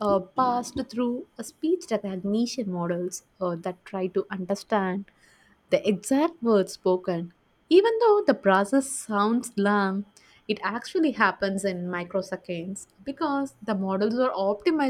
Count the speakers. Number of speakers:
1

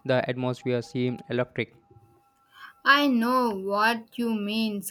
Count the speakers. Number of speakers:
2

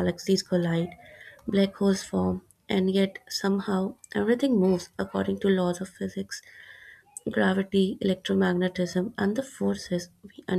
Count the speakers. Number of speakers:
1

